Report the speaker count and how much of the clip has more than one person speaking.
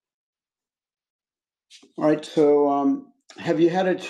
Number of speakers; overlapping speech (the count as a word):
one, no overlap